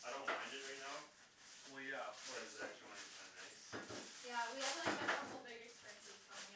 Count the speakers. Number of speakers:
3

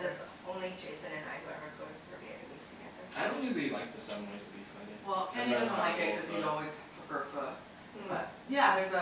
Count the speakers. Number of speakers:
3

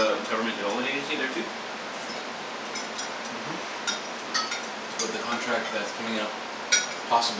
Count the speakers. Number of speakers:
2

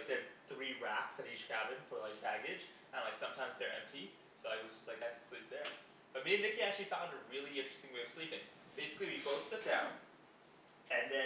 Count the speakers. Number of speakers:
1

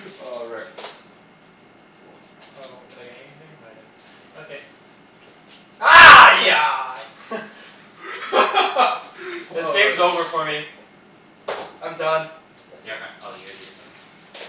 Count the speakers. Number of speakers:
4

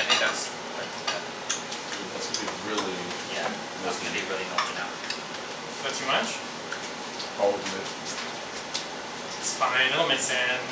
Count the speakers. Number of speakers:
3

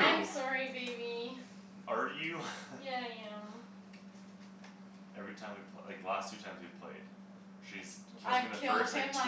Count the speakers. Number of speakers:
2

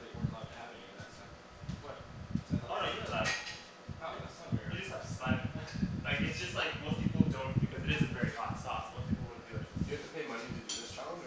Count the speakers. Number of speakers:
3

